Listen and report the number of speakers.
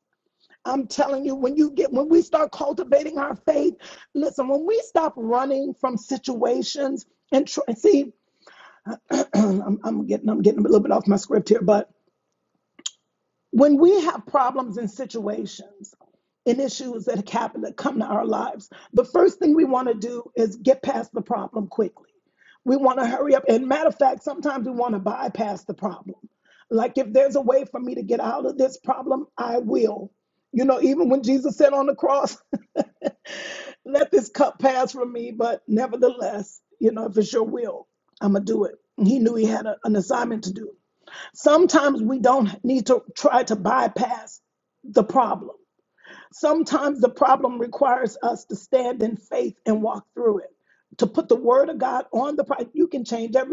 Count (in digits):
1